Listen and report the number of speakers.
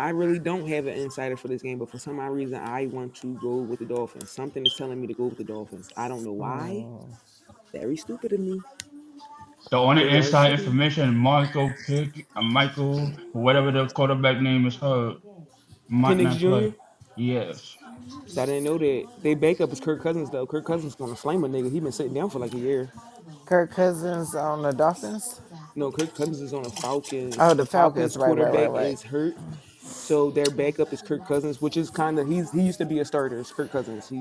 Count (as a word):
three